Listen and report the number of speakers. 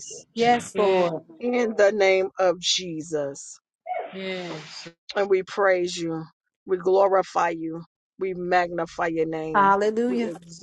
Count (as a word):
three